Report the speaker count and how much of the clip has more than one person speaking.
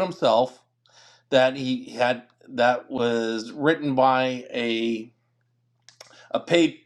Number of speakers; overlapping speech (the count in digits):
1, no overlap